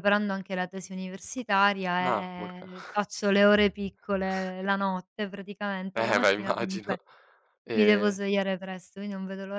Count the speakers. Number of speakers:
2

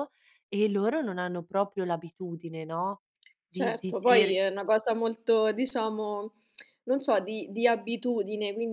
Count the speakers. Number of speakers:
2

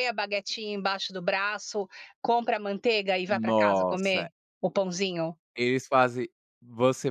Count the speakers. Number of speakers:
2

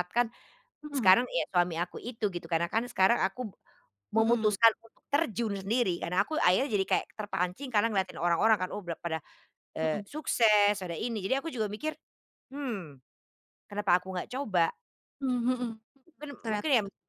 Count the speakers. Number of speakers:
2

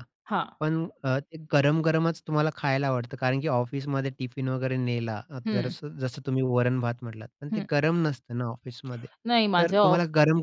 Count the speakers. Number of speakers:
2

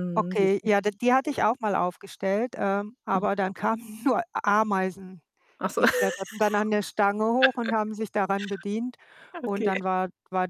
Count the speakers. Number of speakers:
2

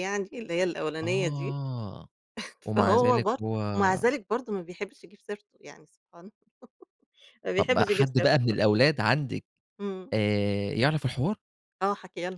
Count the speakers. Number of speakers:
2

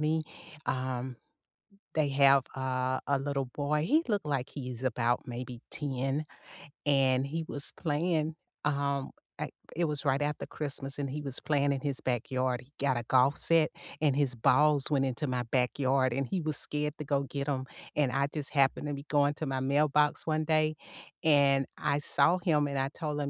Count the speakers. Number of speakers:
1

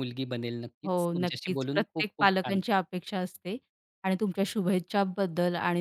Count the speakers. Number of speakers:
2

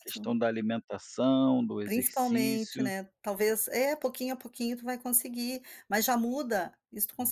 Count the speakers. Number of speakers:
2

